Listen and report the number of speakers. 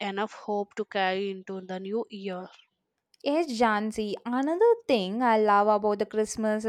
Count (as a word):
two